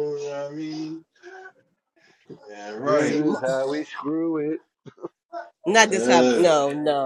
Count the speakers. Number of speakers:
3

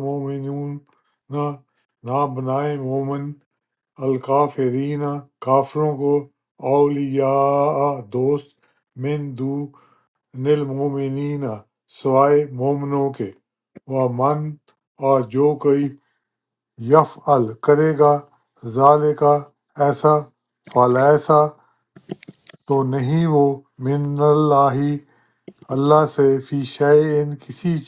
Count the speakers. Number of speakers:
1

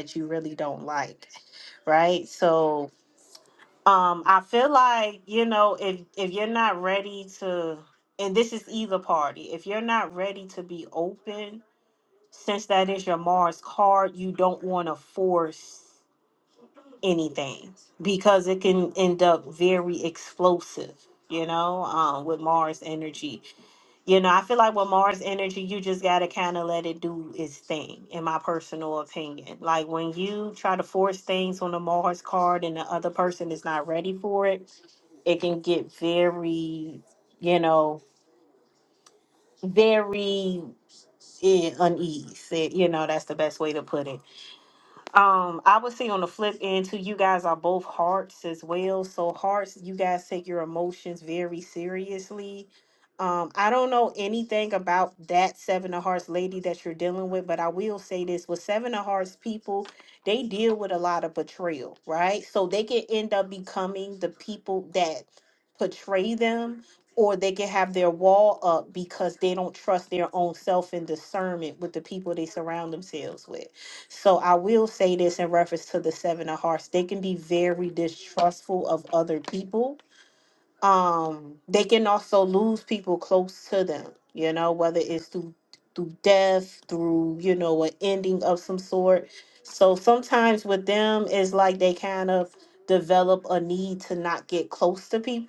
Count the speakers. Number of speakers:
1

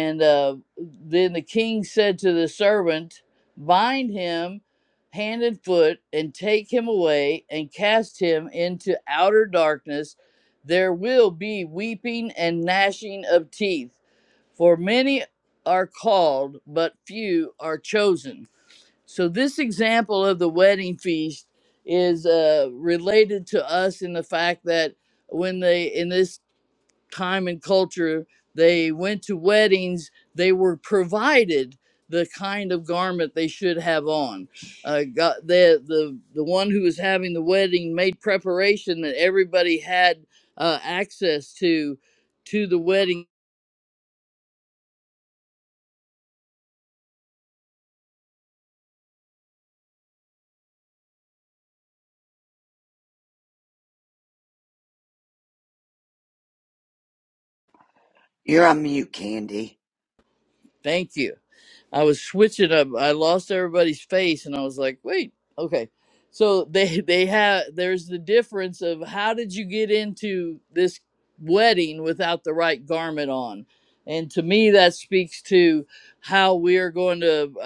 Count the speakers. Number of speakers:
2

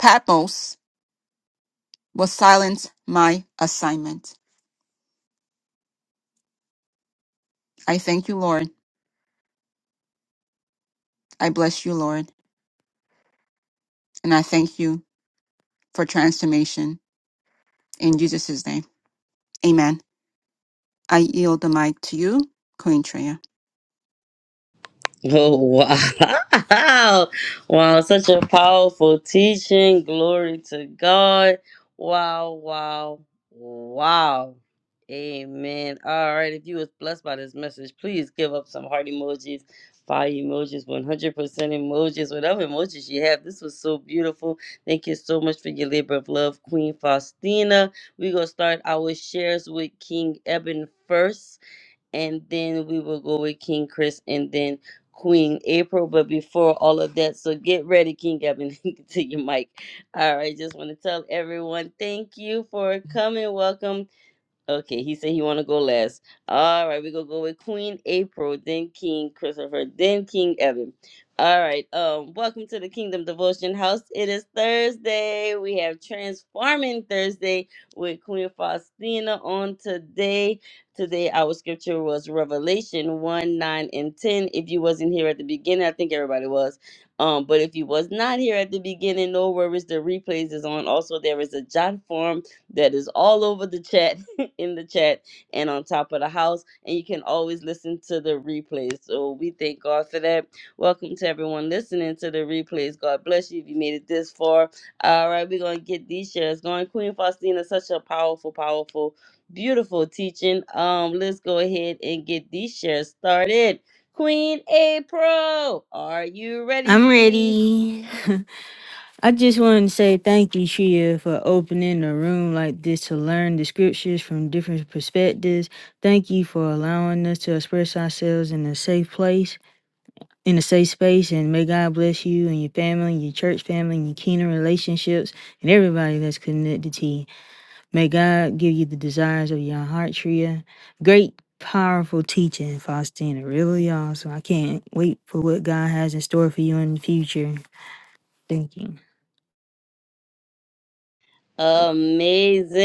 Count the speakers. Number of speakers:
3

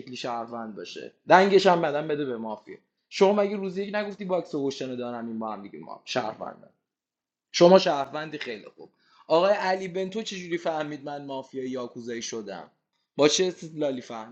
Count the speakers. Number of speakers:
1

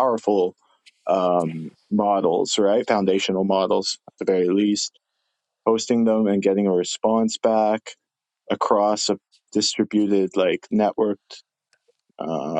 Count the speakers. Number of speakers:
1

